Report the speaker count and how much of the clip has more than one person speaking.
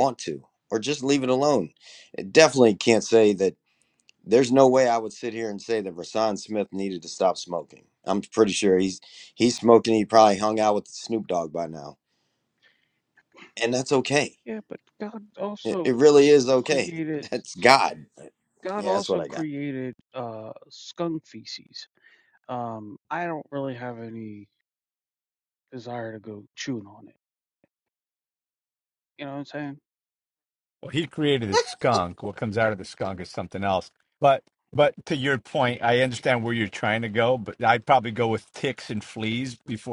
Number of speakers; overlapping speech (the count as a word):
three, about 3%